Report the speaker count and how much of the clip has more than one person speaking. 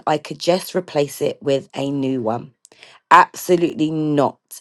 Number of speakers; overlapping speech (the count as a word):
one, no overlap